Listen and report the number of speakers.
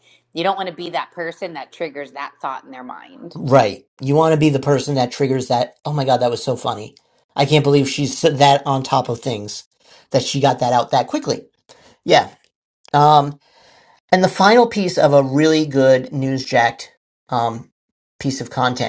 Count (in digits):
2